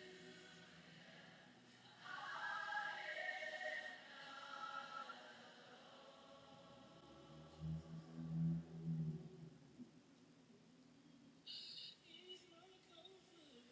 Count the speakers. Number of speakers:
zero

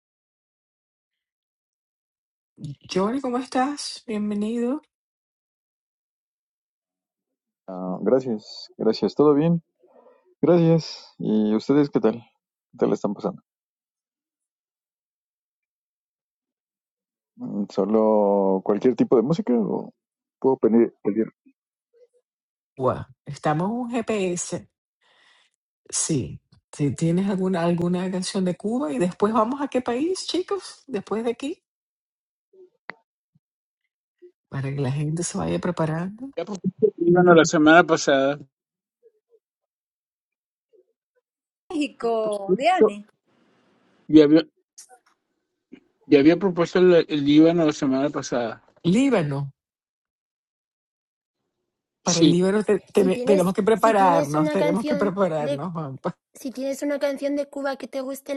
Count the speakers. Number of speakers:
five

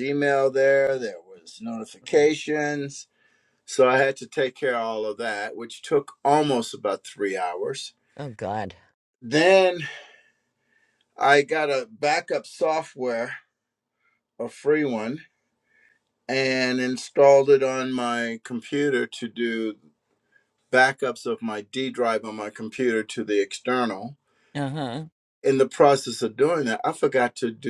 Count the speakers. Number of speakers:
two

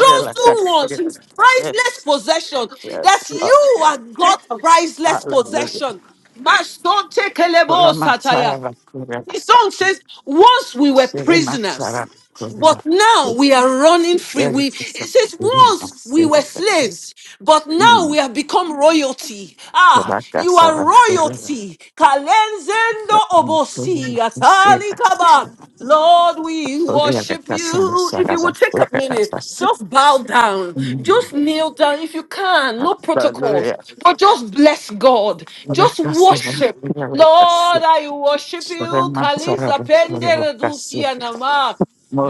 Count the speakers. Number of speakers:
two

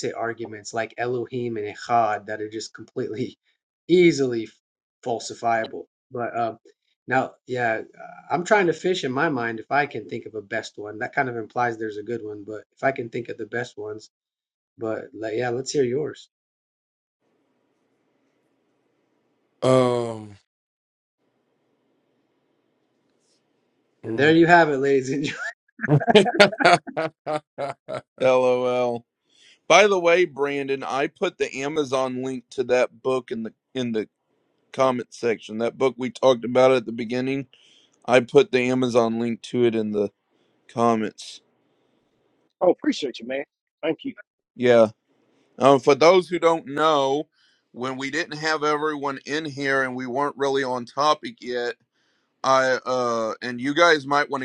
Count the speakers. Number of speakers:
four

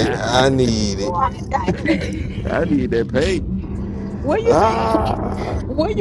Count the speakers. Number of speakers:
three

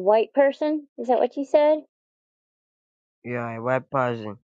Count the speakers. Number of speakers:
two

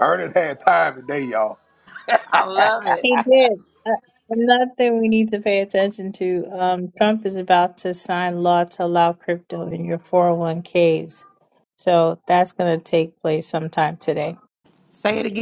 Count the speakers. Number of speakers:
three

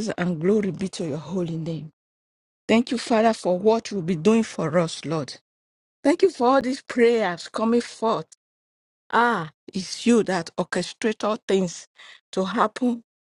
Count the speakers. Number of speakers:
one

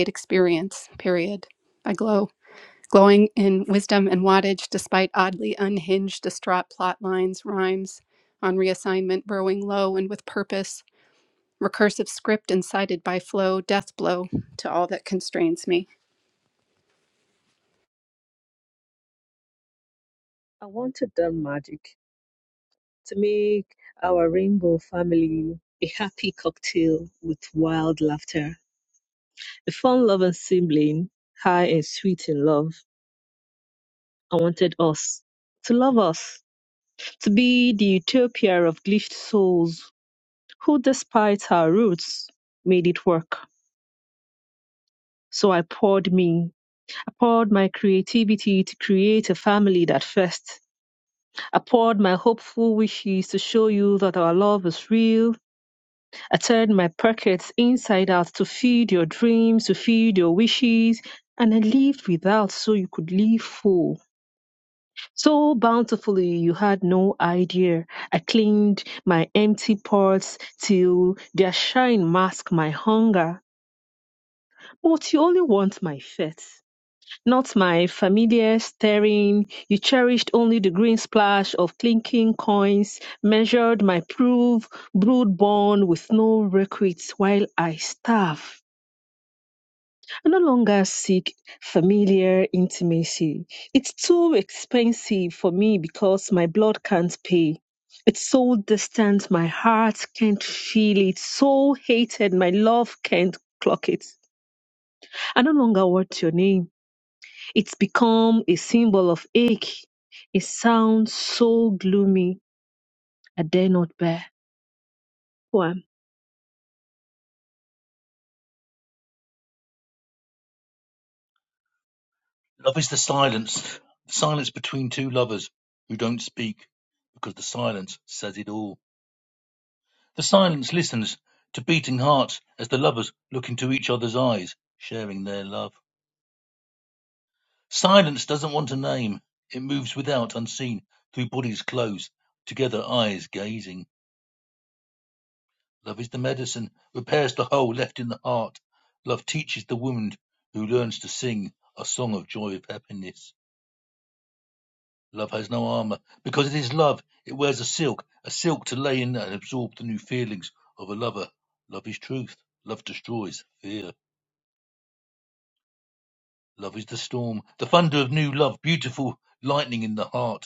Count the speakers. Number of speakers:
three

